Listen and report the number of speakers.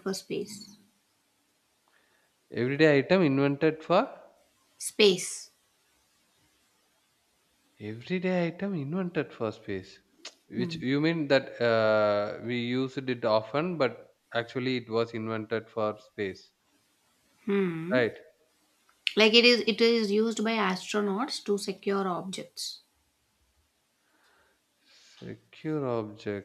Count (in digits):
2